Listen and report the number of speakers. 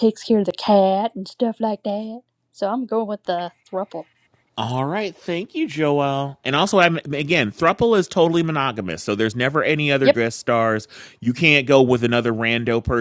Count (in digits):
2